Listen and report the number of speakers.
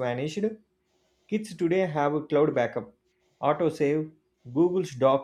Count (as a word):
one